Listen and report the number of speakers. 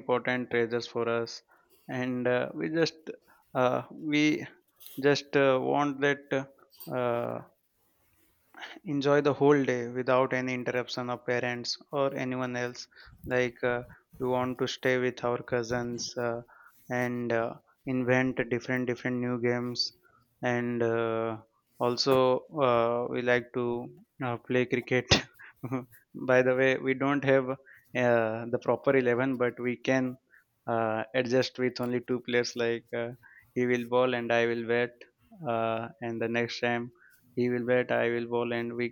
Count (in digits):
1